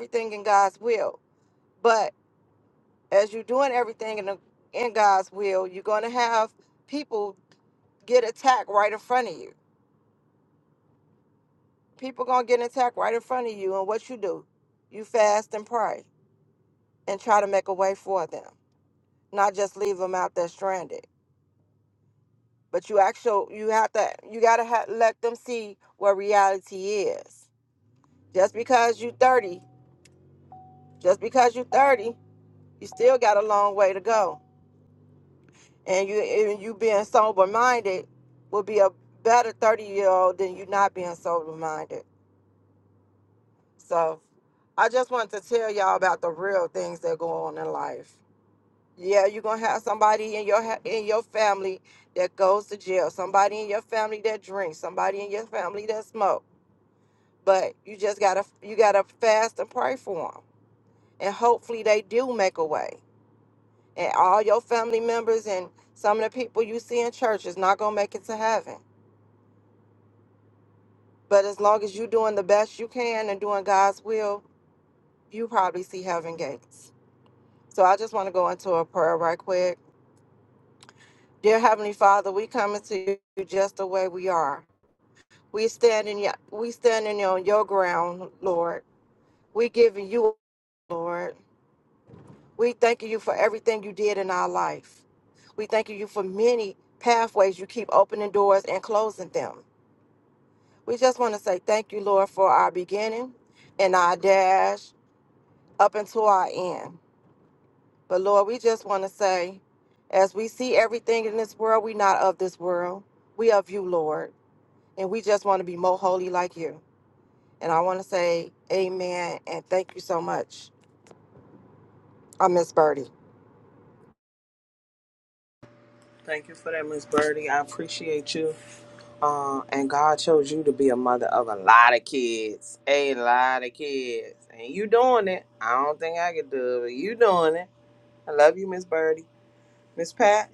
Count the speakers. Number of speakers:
two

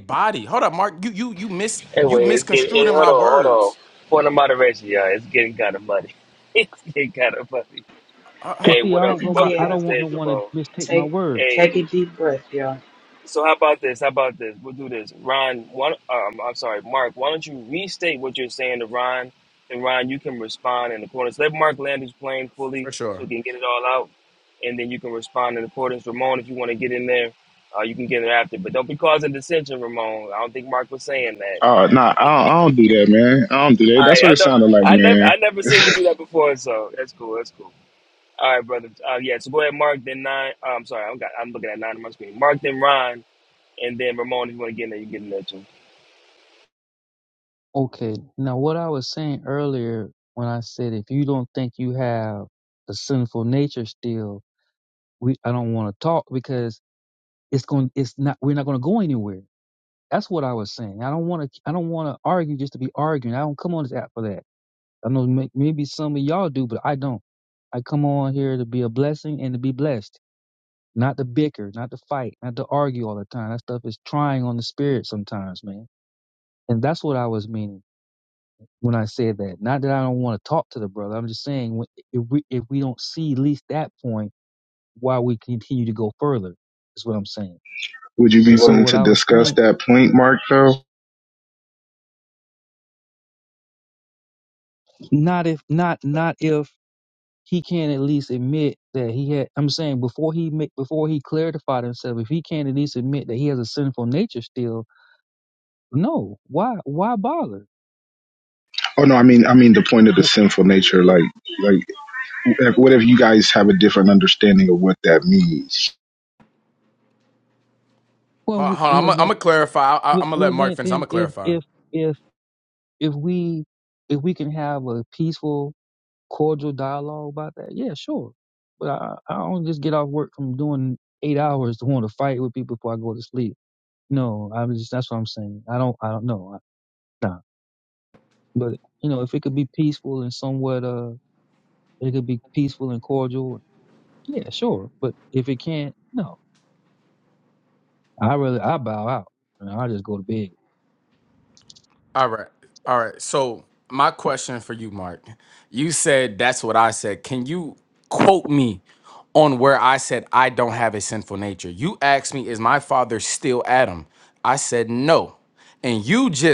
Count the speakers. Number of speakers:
five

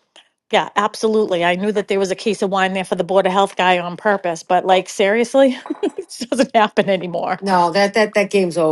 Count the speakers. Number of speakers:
two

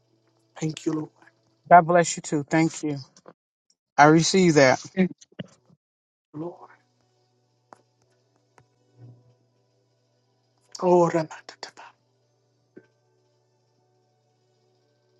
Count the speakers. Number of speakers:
two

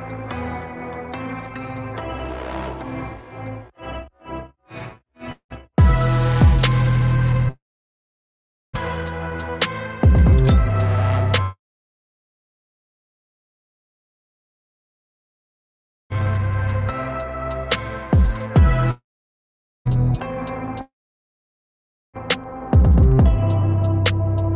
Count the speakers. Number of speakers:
zero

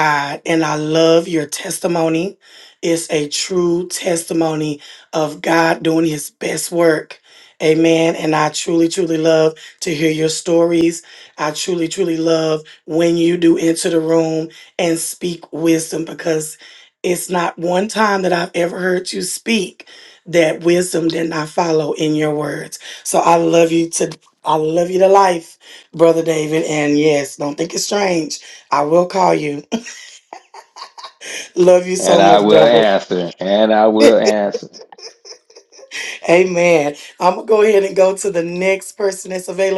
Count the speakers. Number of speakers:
two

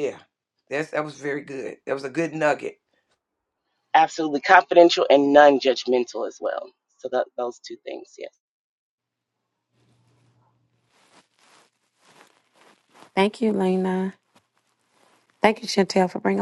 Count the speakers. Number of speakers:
three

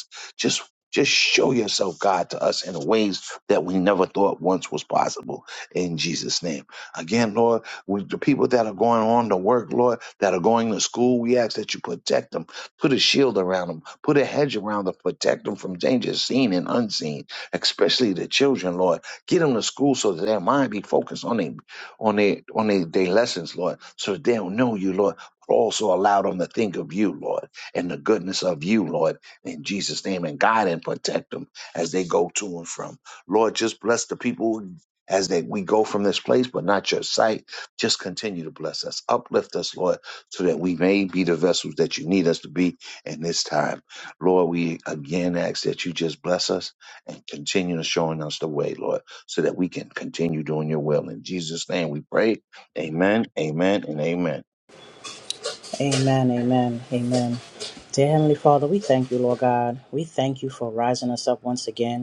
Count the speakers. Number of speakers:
two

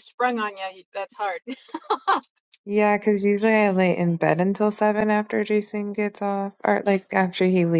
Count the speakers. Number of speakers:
two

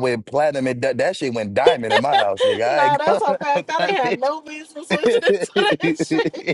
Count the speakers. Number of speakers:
two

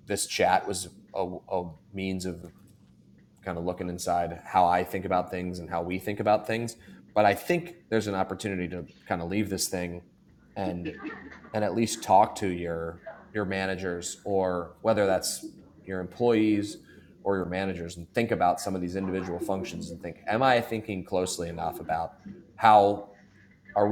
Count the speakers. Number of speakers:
one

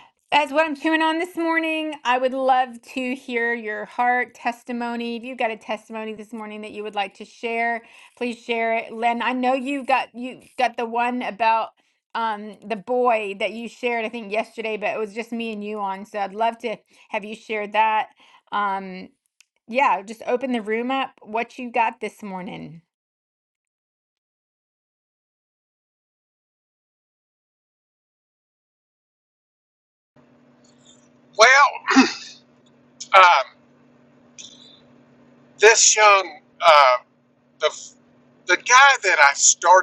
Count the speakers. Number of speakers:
two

